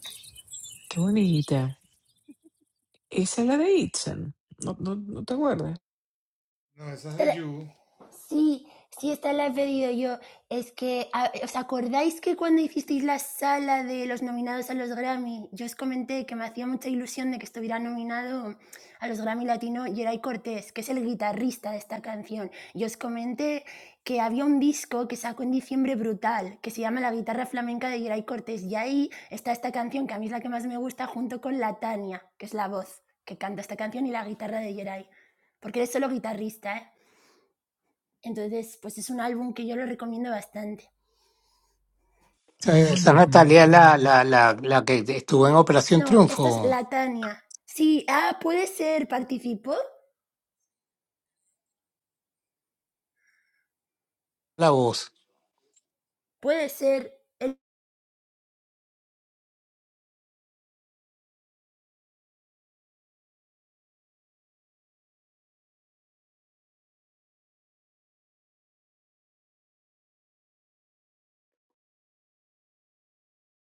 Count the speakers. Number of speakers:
3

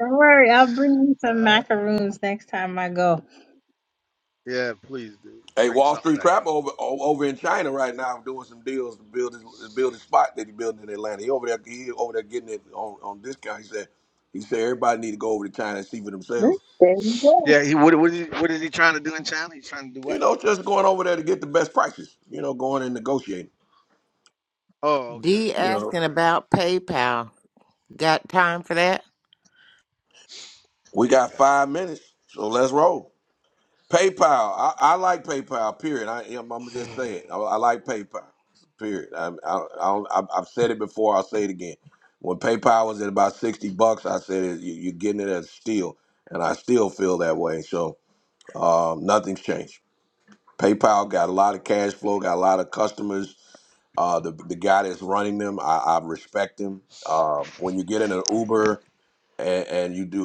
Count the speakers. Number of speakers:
4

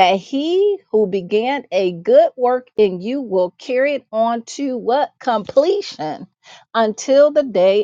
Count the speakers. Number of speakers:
1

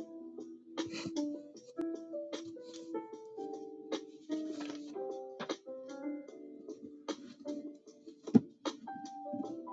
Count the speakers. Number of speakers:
0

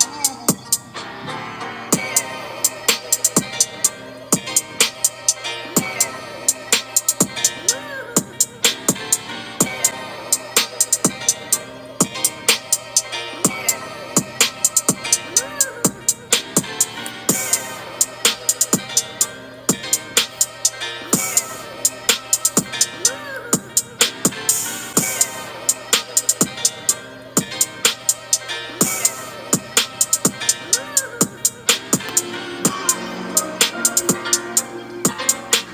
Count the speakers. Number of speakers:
0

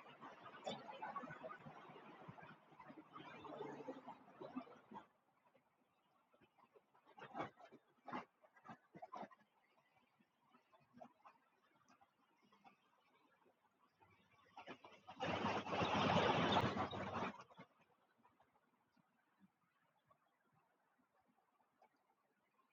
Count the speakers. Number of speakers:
0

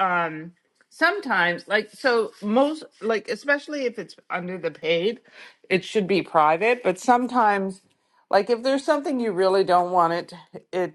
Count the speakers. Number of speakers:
1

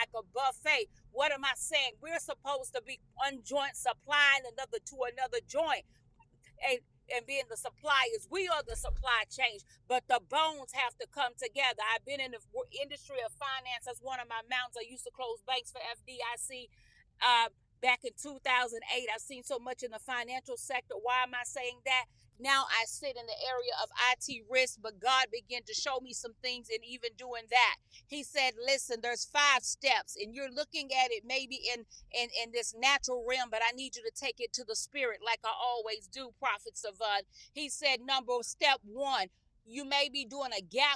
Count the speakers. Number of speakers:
1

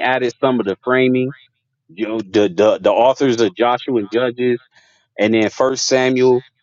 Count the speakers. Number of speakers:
1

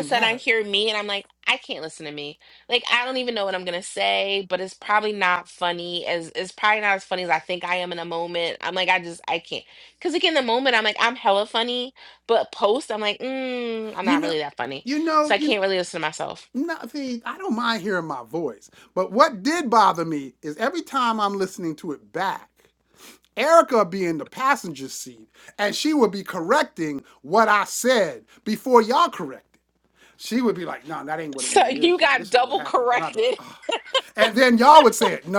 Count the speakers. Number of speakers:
2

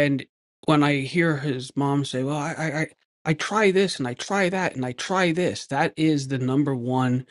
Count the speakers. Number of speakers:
1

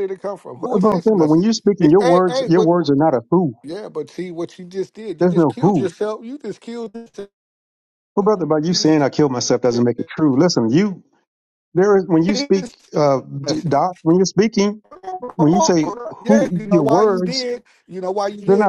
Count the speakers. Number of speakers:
2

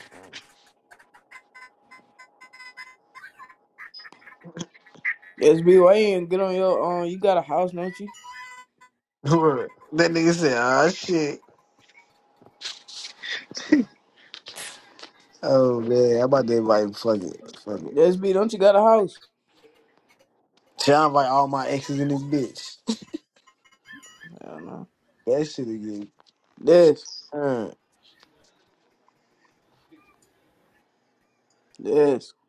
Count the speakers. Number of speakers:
2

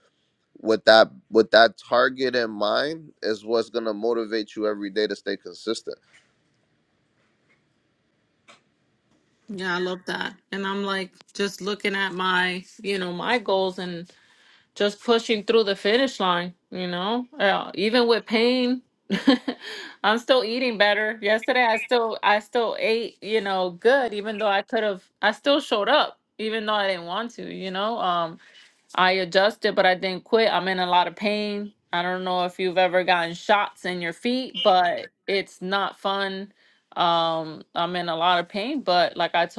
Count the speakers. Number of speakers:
2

